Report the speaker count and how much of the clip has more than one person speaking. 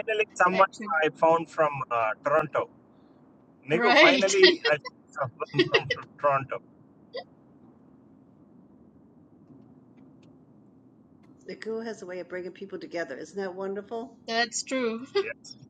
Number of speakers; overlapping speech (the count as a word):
three, about 7%